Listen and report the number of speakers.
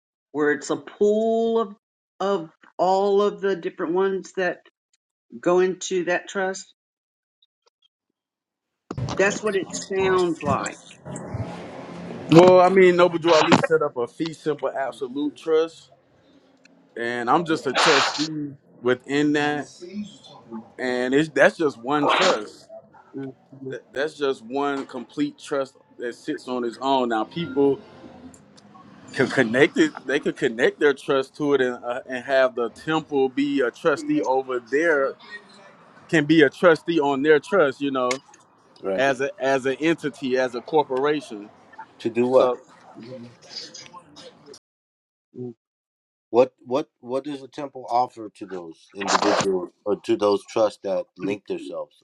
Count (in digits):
3